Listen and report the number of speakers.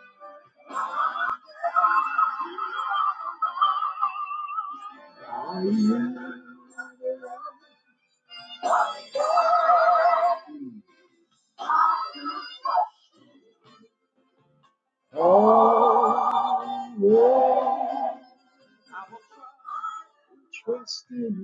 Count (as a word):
one